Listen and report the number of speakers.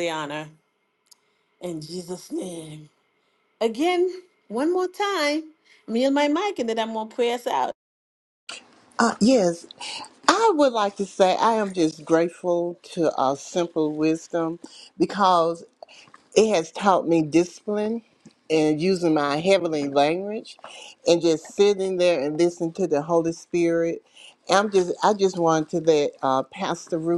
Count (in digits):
2